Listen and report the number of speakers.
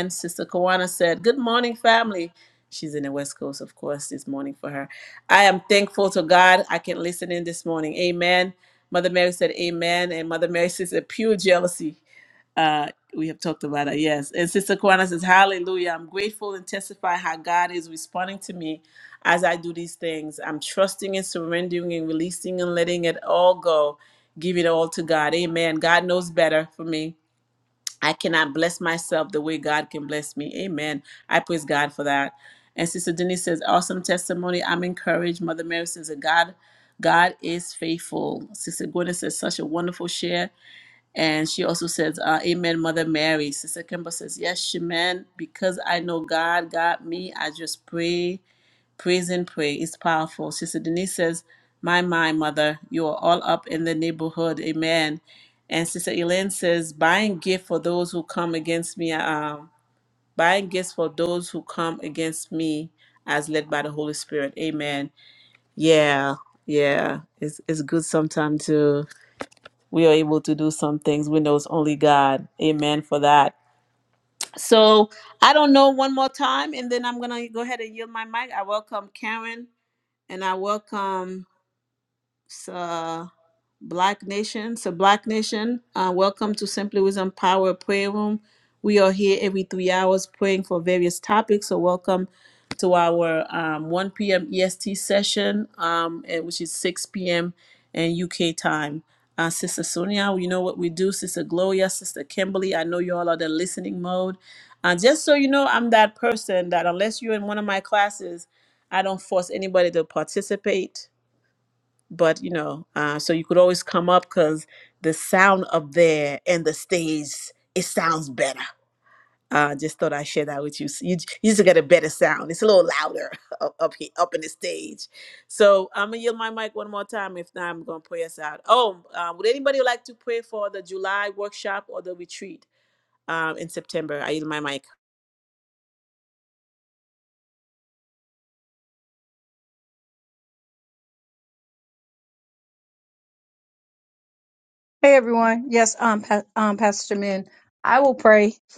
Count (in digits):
2